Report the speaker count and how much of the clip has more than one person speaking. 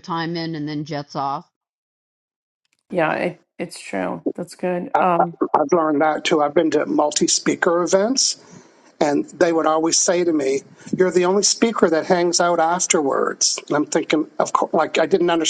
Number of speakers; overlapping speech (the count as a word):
three, no overlap